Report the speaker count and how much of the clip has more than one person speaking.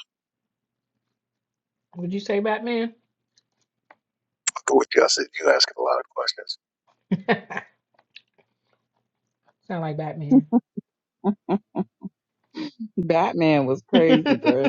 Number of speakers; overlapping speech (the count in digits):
3, no overlap